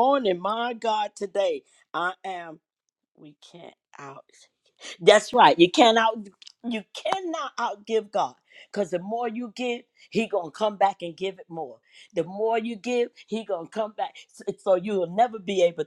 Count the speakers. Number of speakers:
1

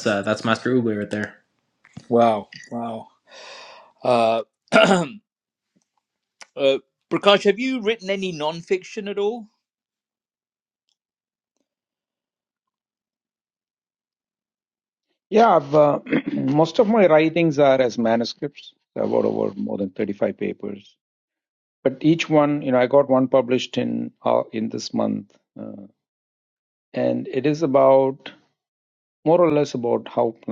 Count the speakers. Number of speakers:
3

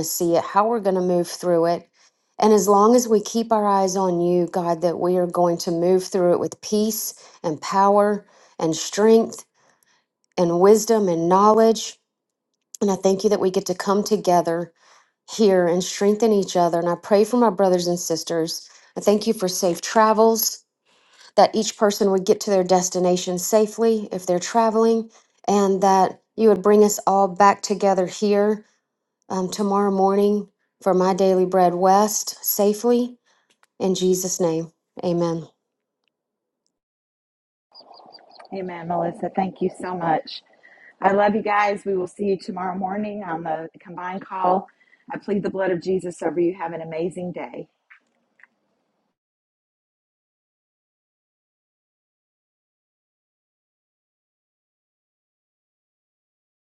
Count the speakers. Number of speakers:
2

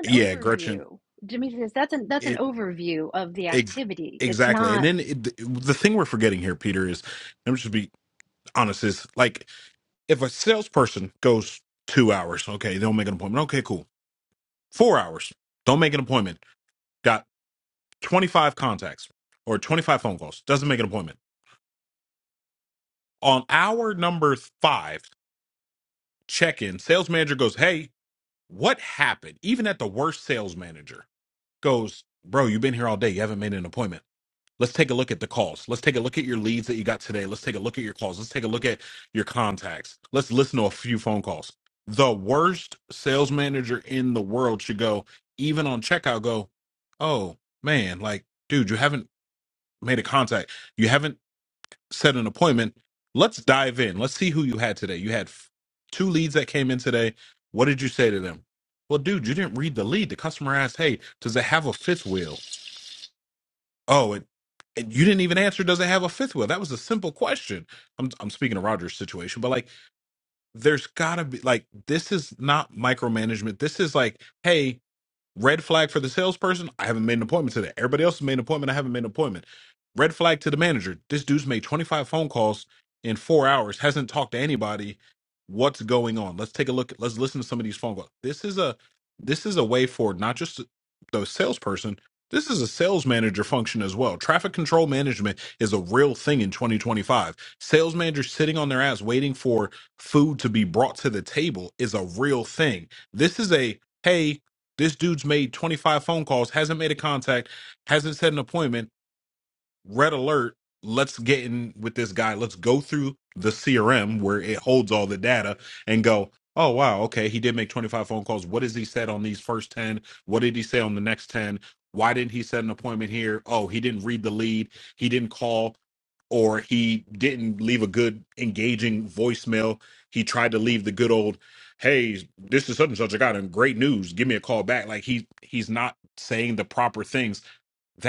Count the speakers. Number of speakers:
2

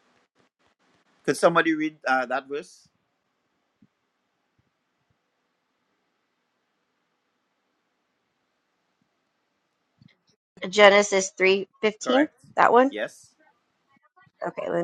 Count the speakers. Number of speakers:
2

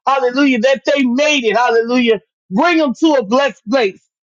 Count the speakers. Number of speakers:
1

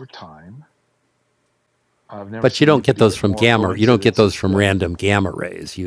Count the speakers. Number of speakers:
2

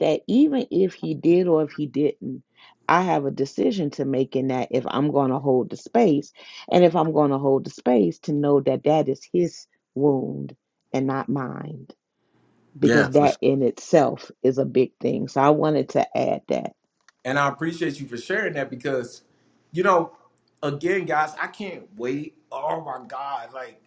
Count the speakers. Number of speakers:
2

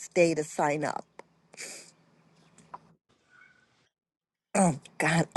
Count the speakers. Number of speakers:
1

